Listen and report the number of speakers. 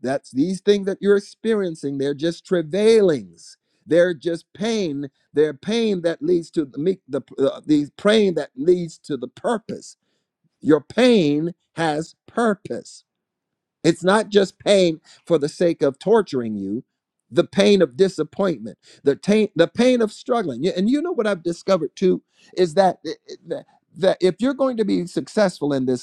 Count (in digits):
1